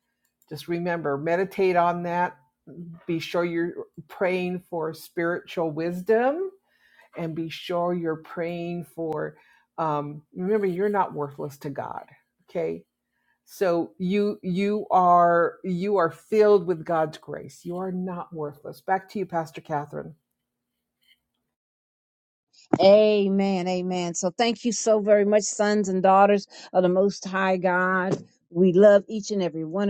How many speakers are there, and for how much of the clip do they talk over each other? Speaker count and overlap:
two, no overlap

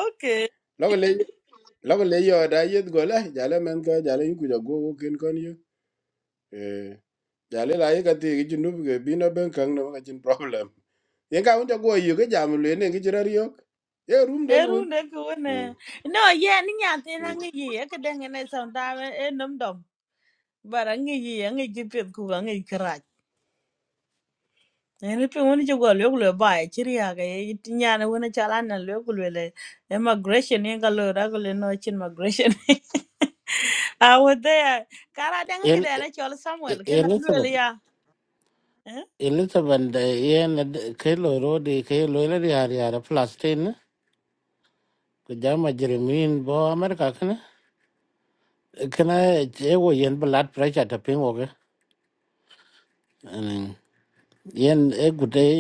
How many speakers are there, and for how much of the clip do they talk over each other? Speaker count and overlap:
three, about 3%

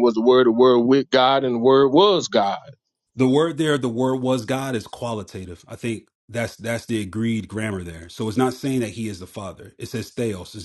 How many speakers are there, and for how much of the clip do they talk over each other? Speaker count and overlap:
two, no overlap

